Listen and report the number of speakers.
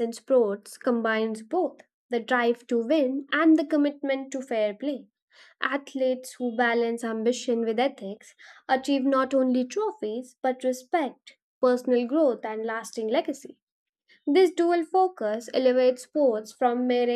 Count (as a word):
one